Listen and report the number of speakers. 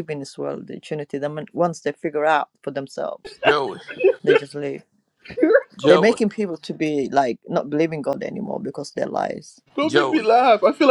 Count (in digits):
3